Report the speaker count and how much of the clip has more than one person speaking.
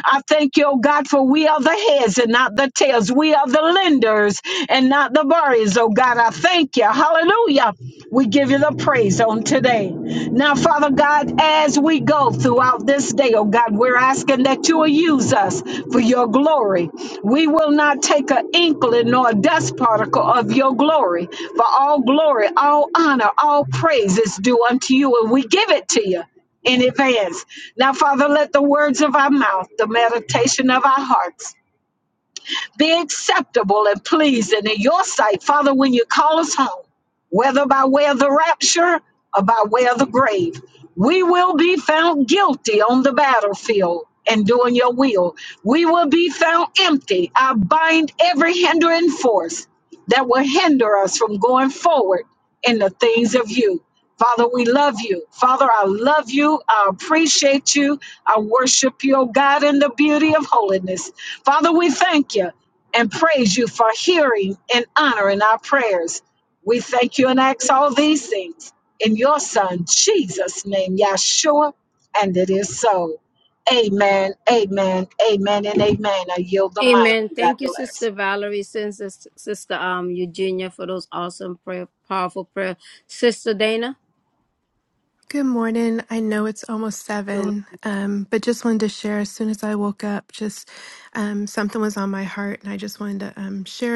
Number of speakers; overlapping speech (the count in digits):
3, about 1%